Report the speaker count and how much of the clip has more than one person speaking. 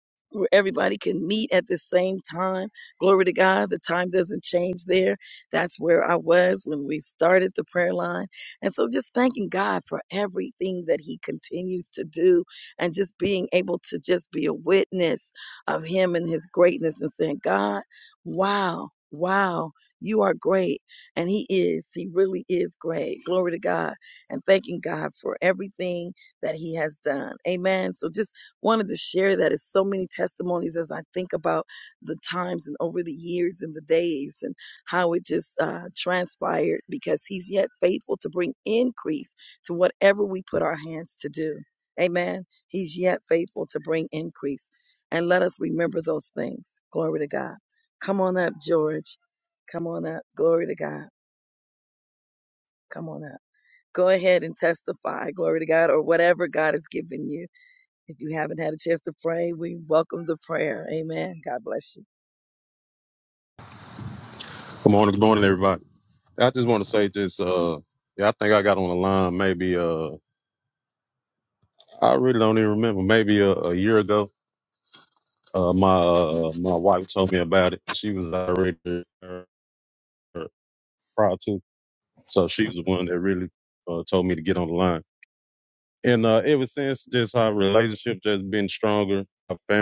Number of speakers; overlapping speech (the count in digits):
2, no overlap